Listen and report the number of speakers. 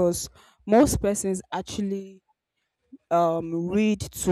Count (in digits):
1